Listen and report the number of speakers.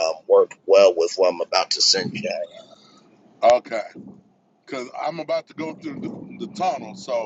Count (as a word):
two